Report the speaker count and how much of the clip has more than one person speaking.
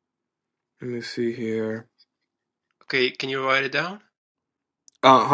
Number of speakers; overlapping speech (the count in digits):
2, no overlap